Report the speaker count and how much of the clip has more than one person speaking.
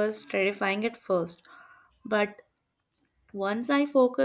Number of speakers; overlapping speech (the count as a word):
one, no overlap